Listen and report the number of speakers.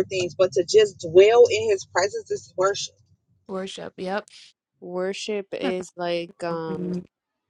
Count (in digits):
3